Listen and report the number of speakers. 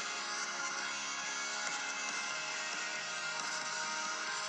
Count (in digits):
0